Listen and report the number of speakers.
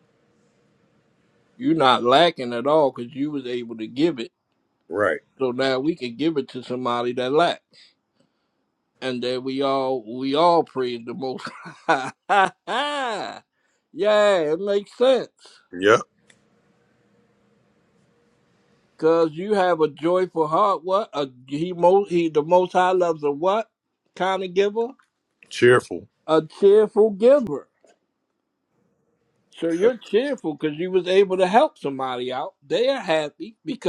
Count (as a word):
two